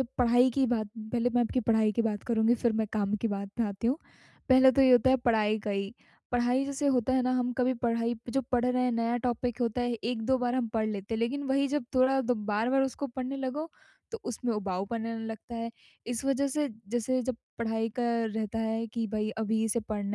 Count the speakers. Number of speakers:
1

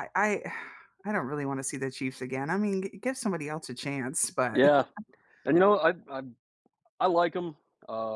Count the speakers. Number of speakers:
2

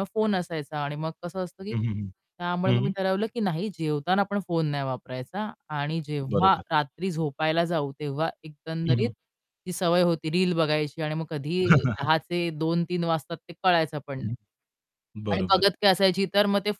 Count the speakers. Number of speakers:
2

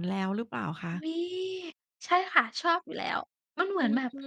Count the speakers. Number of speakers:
2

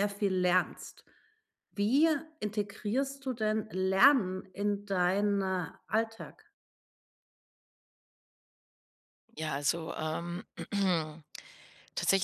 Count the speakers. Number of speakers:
2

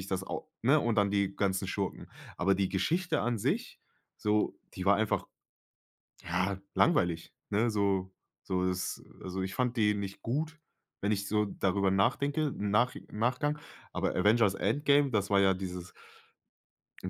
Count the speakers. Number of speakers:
1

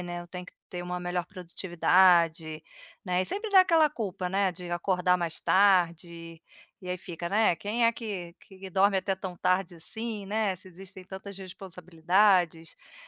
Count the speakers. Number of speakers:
1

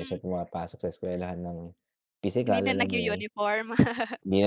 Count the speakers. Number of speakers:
2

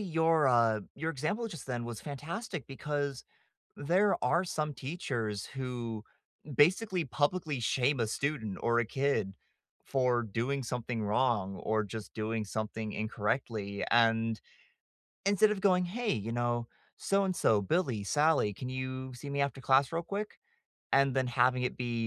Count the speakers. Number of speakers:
1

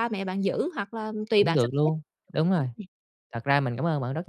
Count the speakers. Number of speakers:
2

